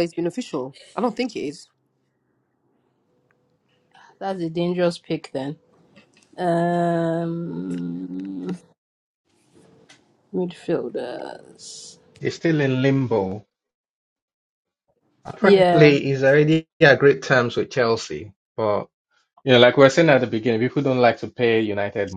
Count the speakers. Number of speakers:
three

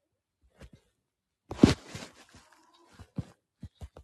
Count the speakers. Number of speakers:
zero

